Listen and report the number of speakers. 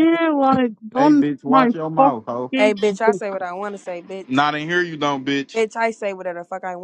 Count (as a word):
three